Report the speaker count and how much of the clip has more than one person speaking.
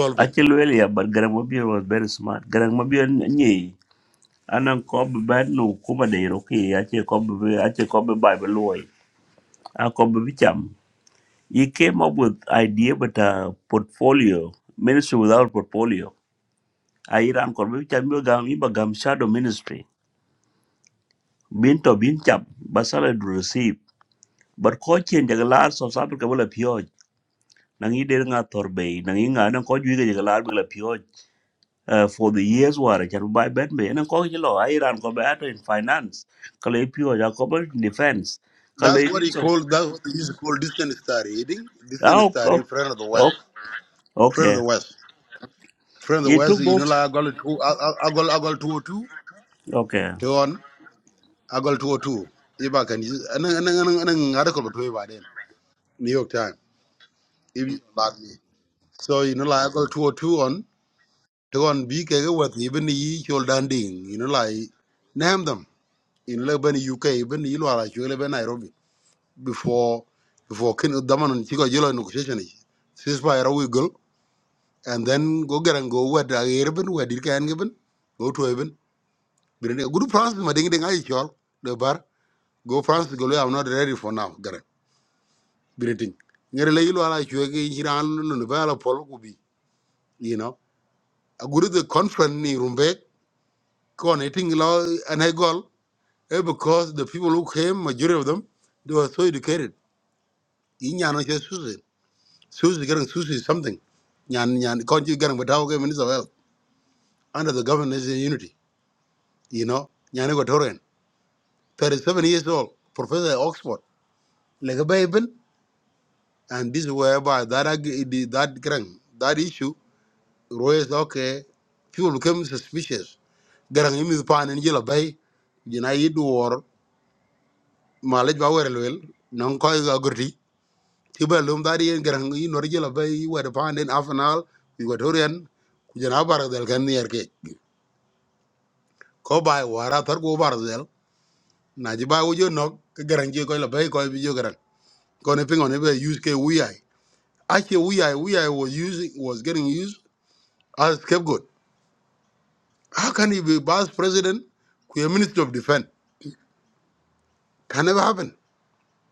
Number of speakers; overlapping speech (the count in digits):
2, about 2%